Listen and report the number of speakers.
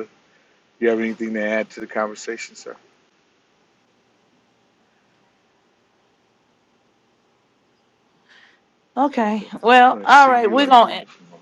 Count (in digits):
2